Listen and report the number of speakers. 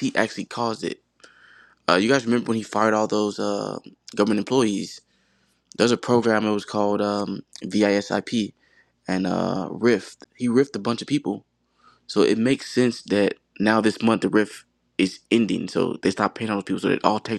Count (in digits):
1